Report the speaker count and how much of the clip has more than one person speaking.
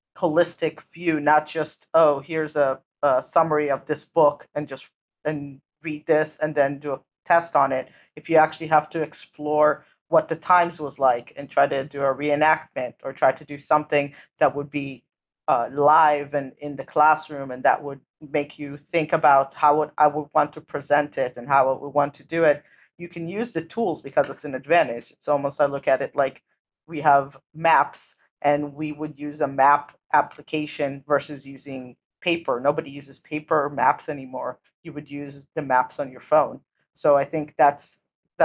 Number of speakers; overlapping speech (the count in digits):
1, no overlap